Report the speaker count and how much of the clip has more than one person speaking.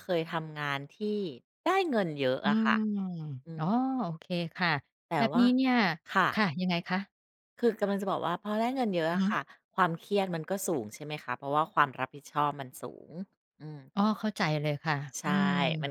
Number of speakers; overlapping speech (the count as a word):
two, about 7%